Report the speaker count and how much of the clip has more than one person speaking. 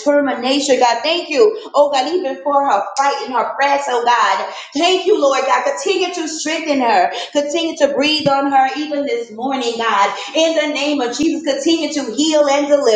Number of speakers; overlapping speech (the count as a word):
one, no overlap